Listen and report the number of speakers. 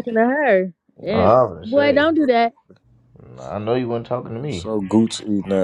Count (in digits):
3